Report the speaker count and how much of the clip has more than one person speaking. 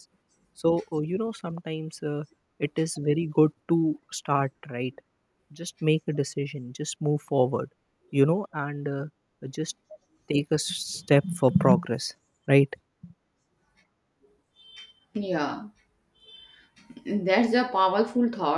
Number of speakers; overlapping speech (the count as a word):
two, no overlap